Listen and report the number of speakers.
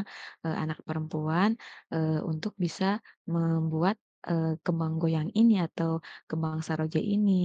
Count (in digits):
1